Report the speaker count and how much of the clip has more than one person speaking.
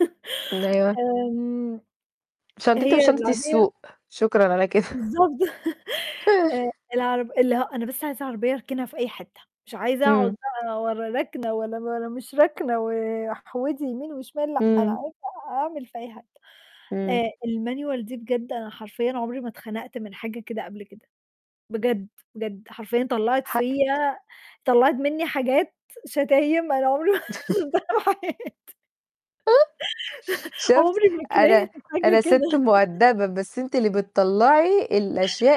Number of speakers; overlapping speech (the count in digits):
2, about 8%